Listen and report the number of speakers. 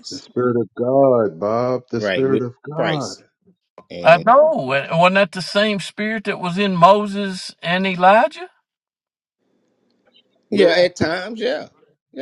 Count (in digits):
3